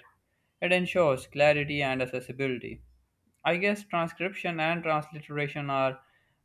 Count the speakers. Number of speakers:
1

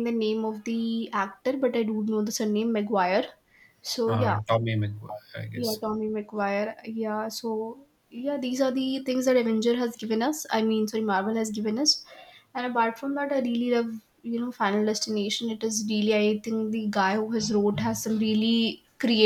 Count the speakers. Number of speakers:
2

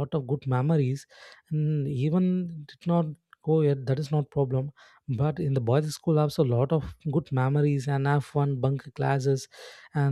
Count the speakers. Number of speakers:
1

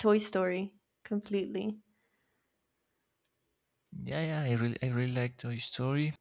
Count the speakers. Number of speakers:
2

